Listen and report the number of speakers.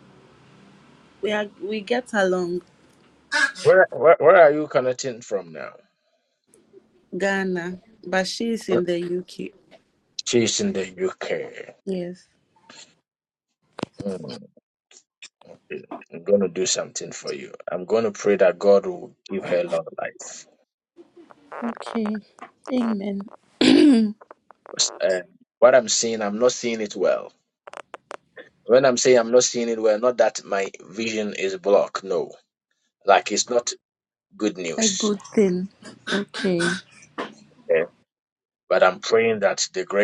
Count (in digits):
2